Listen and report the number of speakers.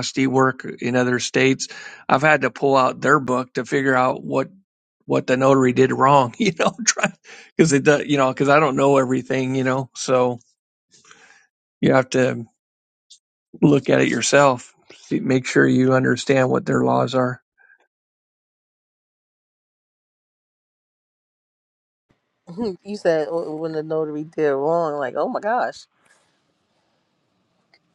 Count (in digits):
2